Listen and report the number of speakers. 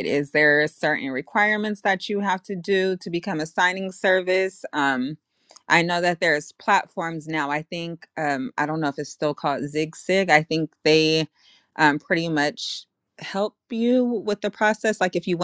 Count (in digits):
1